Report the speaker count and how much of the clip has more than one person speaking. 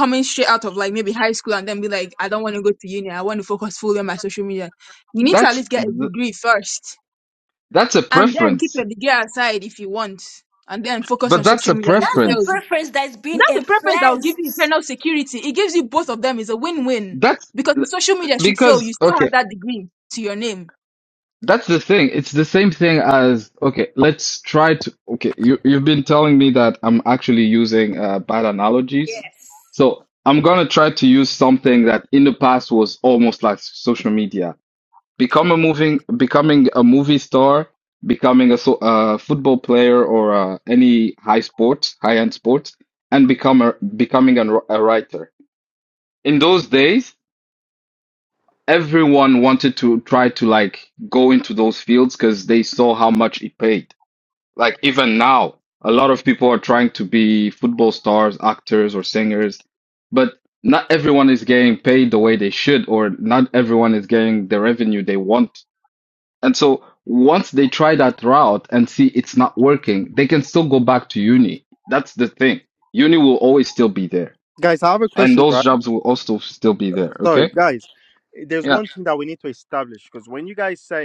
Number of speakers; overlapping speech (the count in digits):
4, about 7%